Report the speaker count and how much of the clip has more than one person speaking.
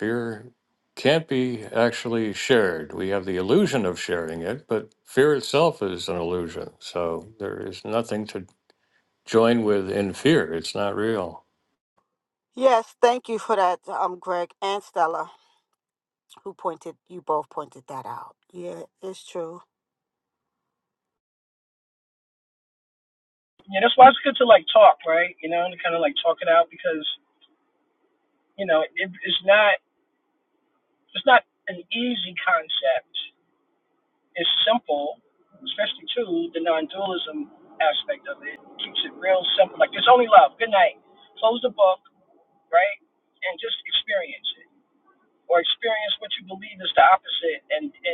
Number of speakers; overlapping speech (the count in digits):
3, no overlap